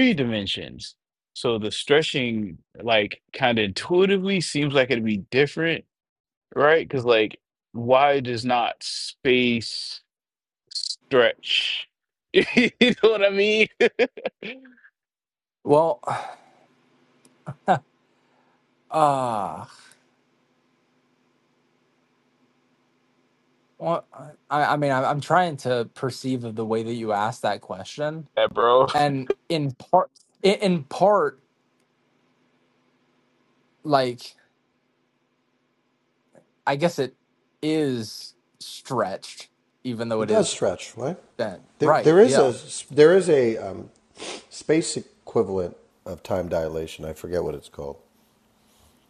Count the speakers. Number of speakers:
3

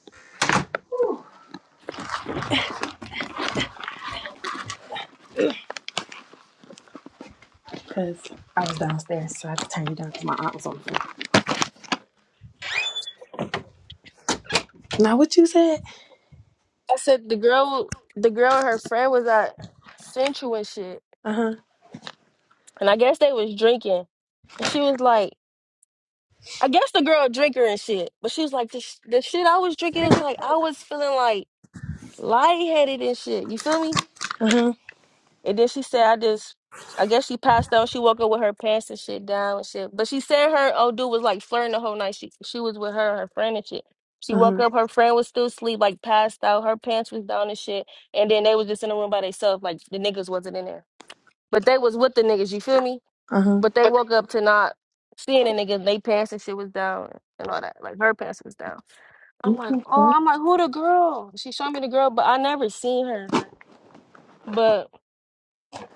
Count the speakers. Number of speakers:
2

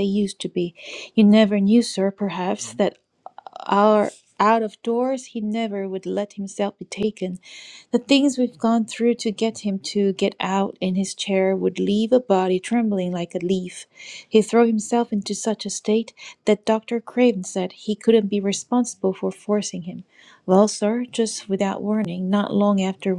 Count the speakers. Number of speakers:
1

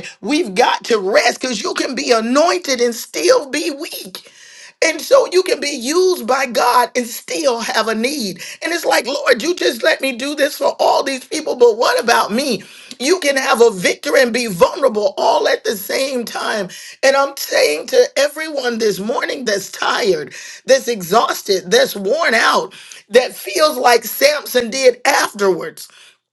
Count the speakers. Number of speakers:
1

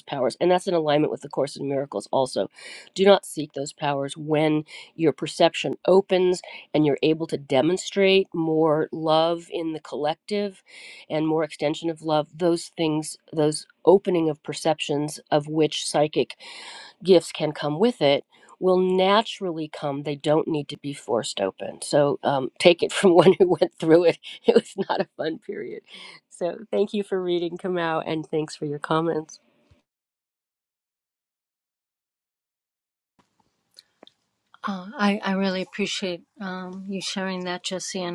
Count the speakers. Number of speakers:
2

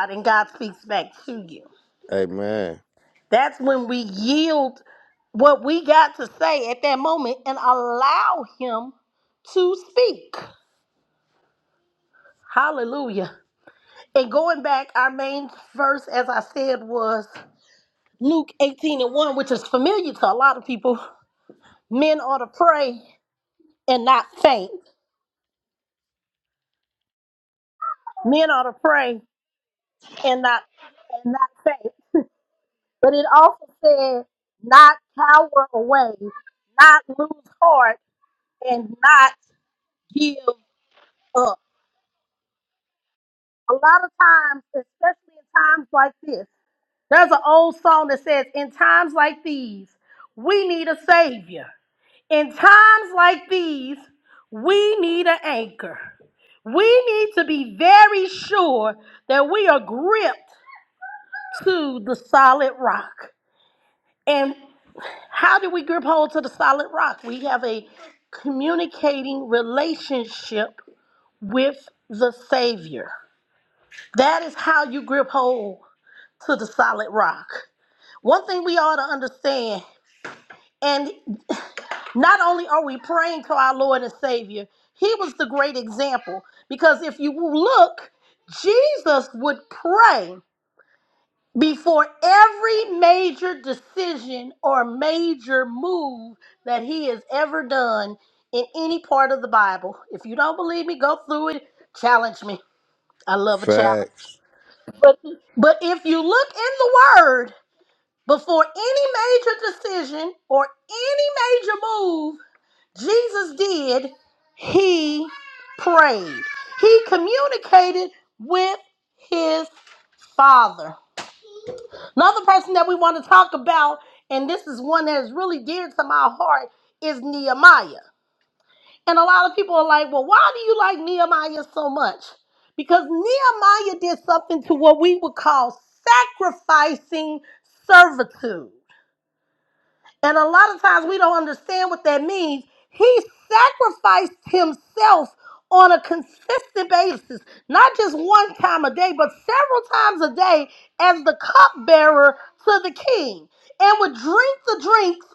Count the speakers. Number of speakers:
2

